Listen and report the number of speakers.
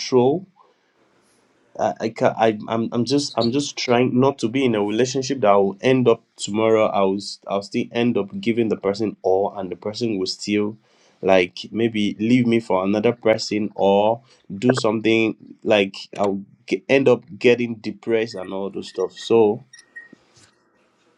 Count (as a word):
one